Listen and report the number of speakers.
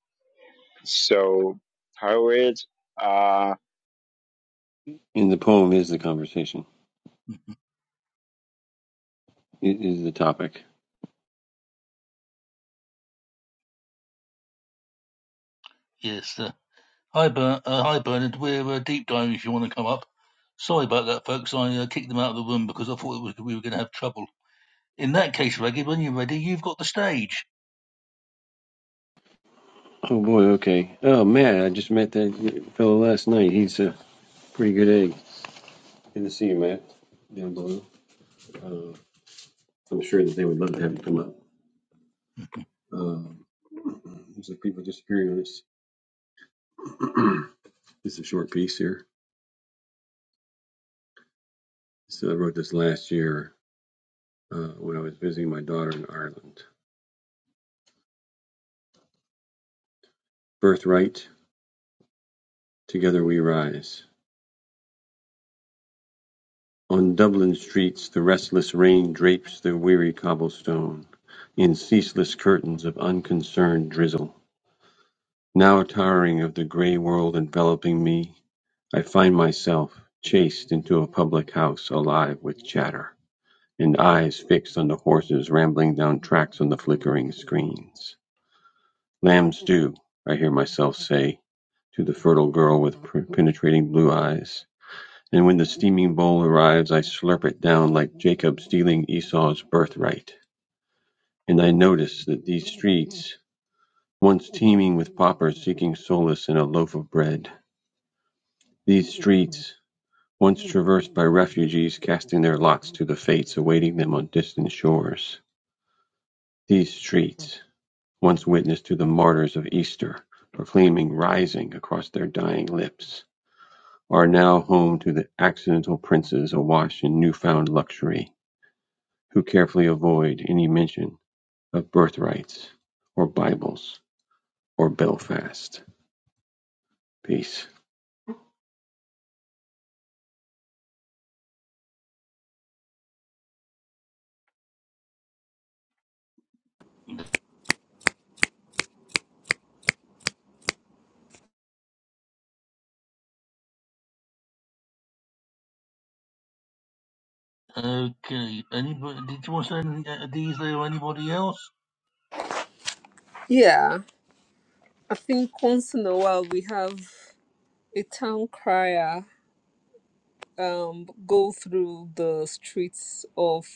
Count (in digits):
4